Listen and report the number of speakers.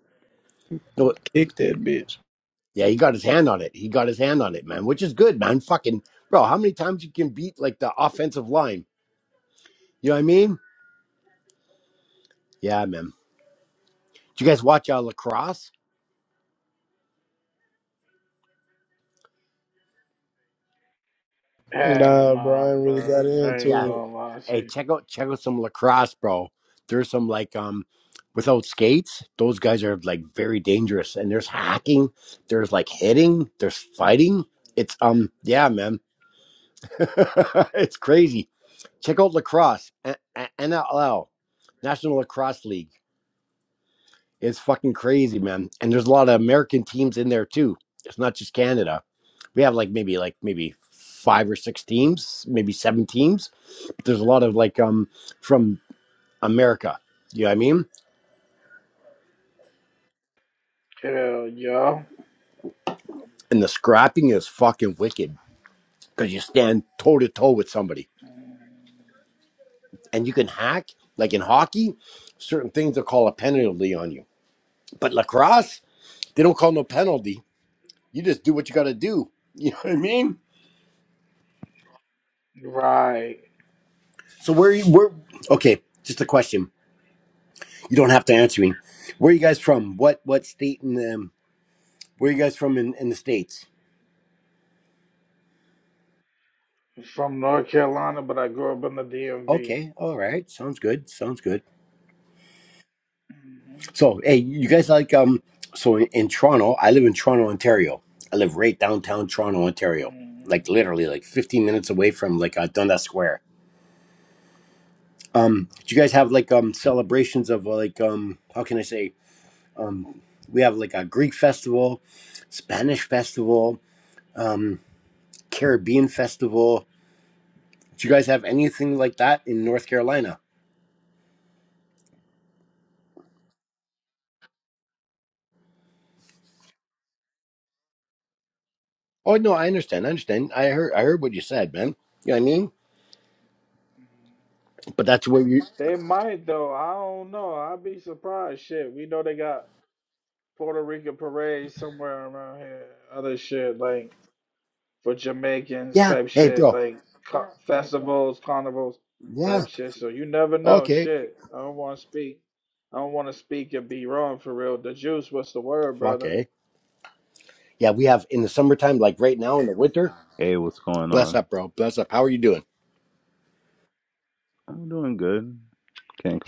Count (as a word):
four